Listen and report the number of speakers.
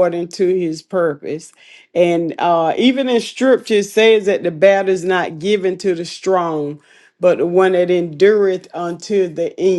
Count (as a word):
one